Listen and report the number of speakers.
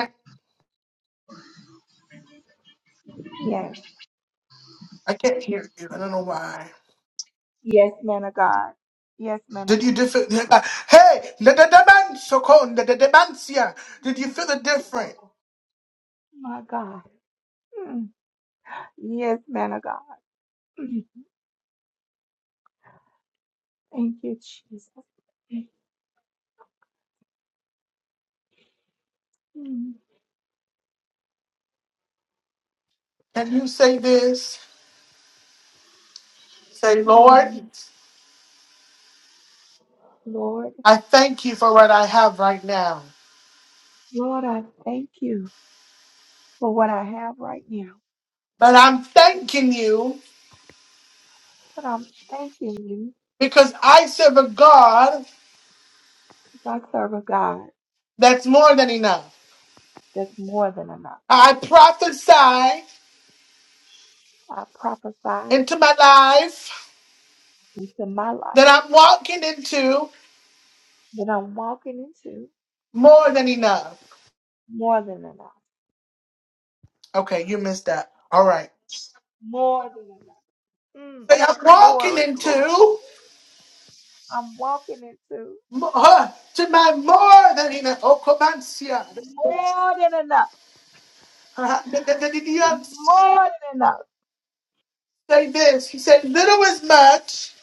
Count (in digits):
2